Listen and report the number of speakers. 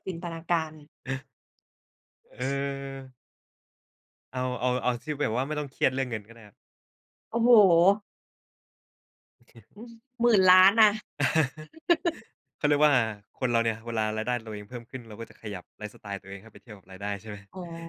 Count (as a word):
two